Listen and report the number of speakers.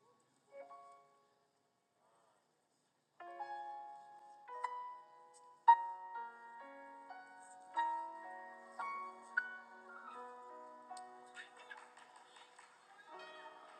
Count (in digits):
0